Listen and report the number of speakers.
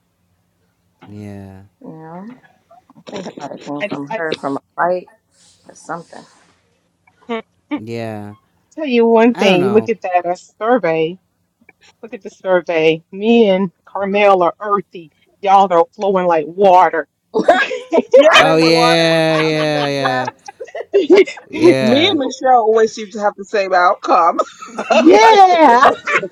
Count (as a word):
four